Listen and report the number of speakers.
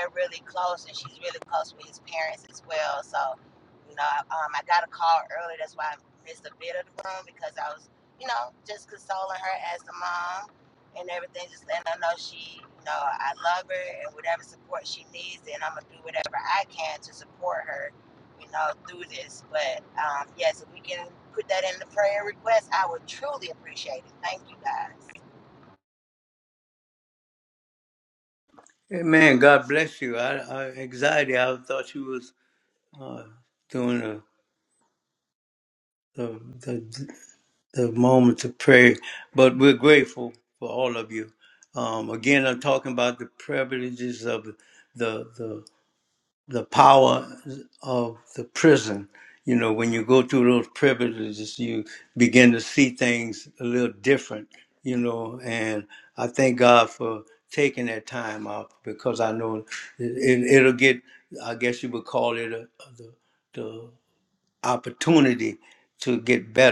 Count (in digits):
2